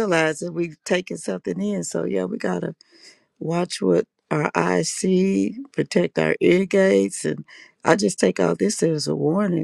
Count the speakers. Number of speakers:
one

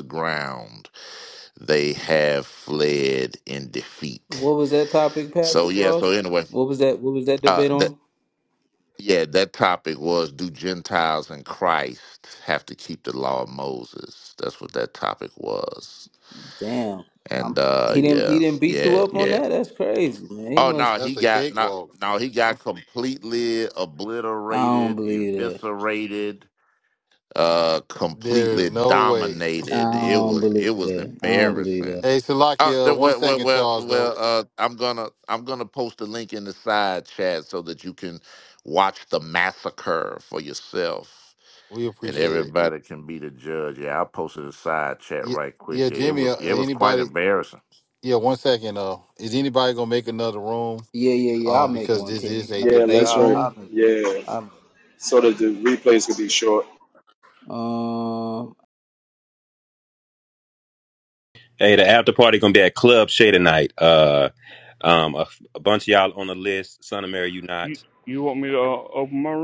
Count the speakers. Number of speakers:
six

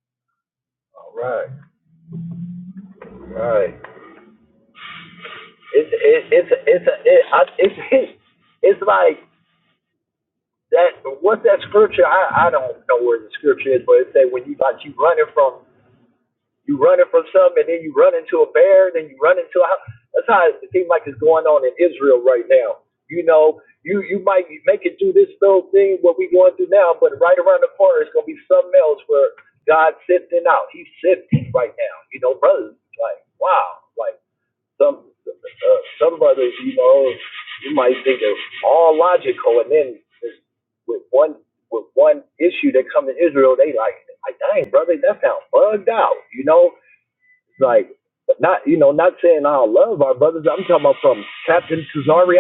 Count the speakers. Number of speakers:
one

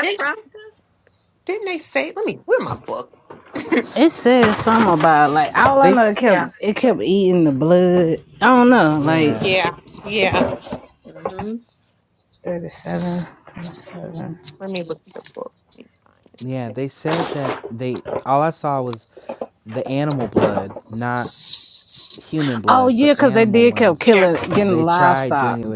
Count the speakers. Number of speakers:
four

